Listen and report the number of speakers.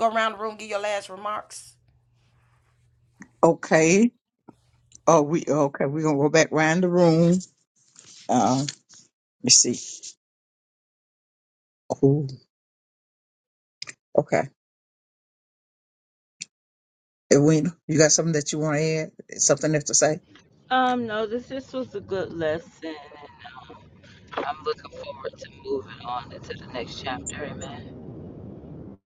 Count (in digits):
3